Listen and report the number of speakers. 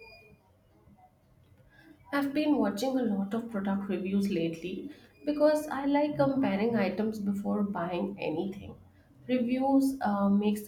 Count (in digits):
1